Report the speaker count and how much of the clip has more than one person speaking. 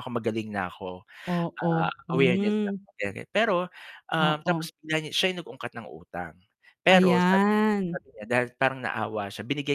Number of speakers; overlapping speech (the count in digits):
2, about 20%